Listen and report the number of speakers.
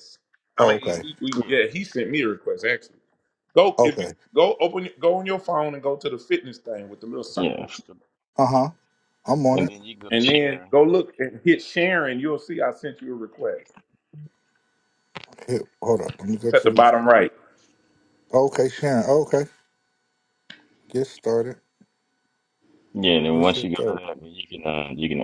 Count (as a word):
three